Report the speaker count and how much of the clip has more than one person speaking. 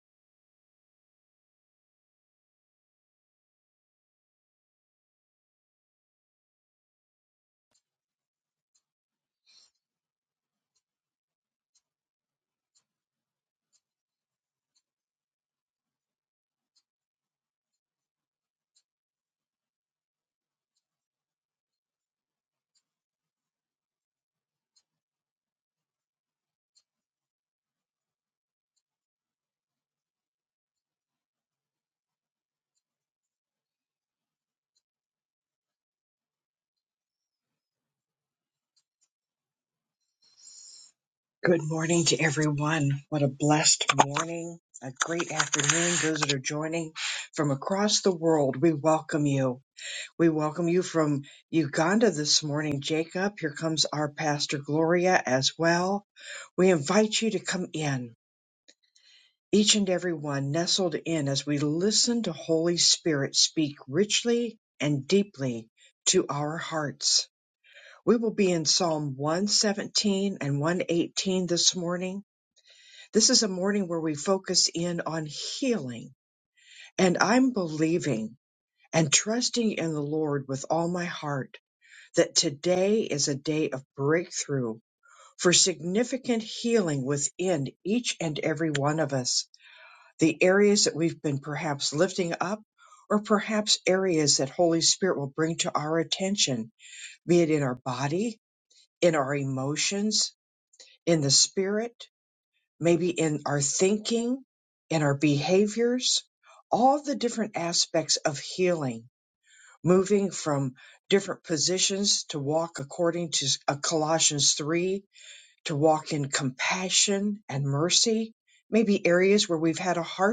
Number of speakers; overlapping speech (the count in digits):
1, no overlap